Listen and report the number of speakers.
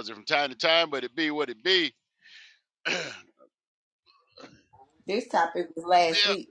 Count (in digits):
2